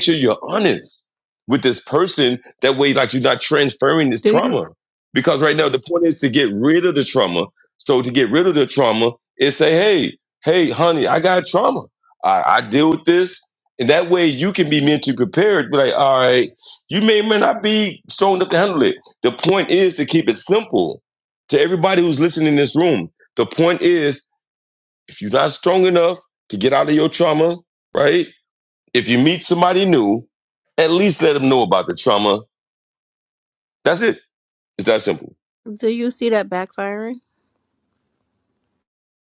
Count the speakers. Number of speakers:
two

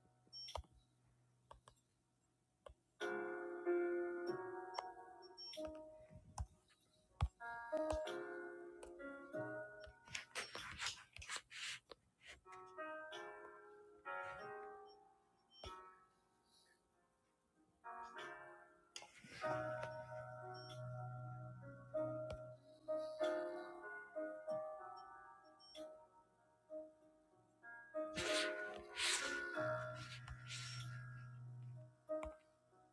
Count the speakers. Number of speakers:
zero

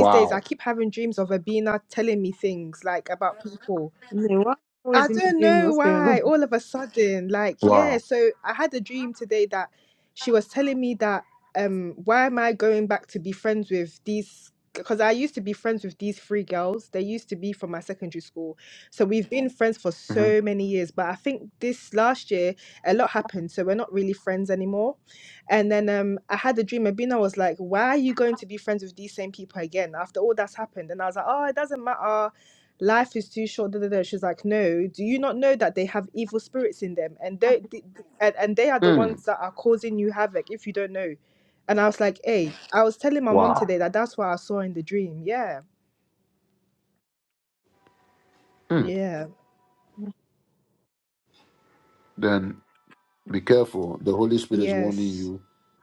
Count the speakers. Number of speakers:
three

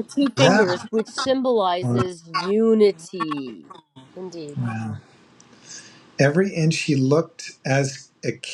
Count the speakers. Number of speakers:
two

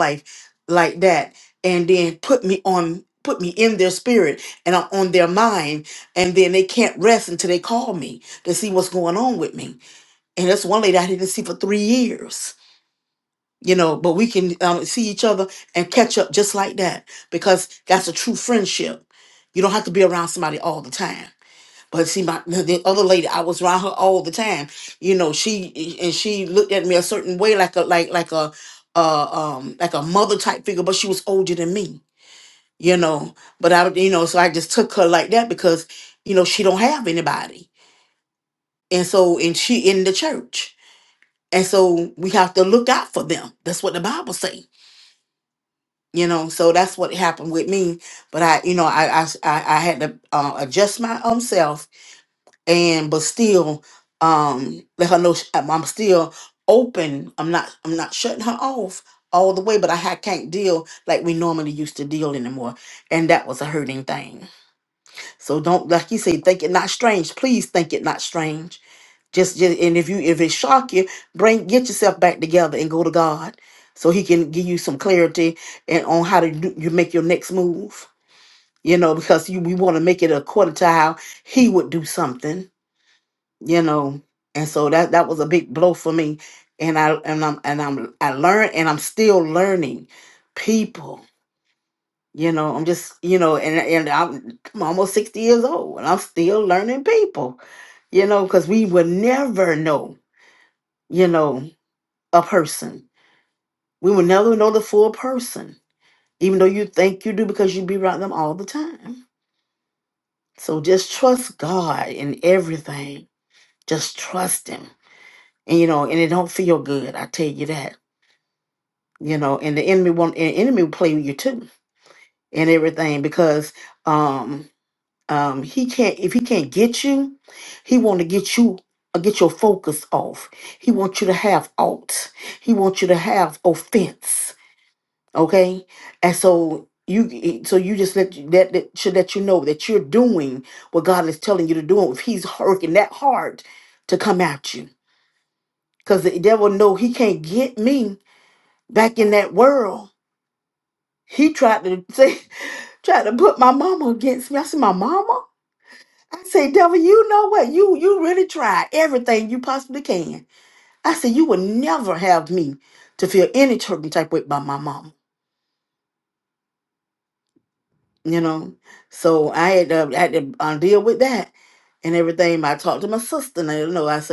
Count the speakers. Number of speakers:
one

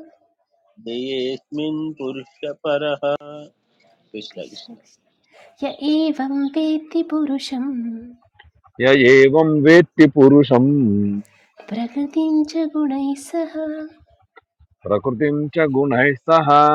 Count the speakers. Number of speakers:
three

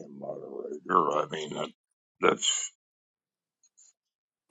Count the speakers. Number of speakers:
one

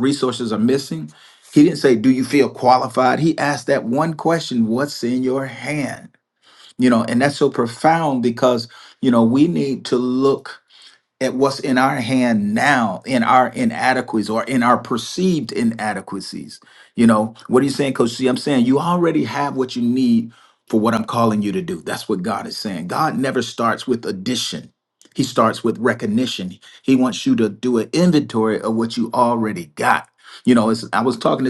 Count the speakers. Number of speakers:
one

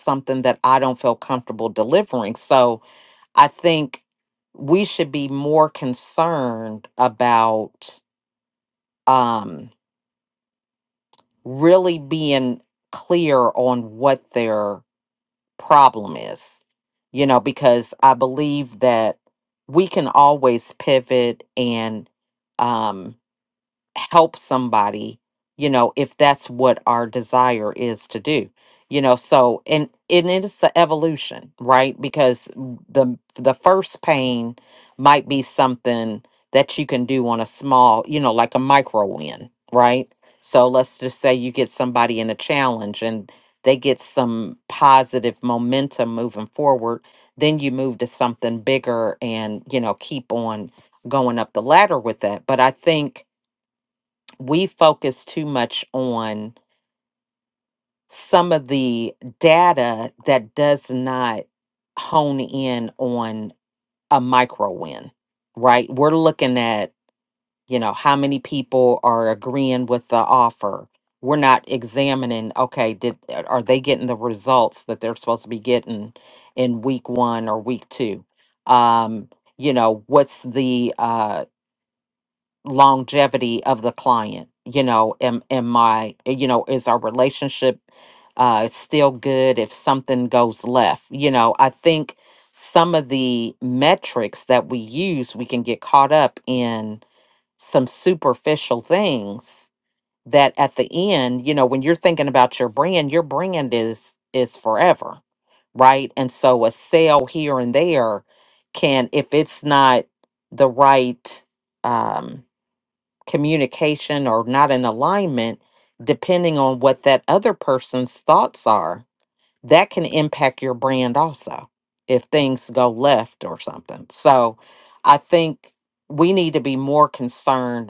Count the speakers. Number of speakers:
one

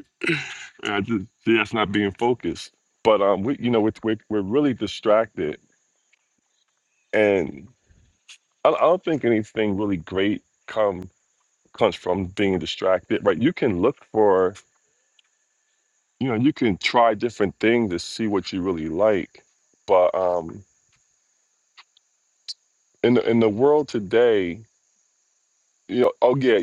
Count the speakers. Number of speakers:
one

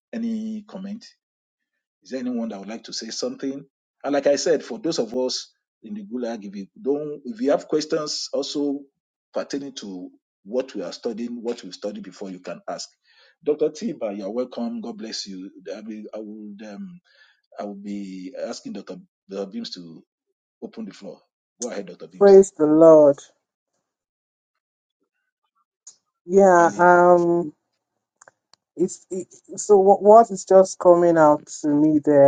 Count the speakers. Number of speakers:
two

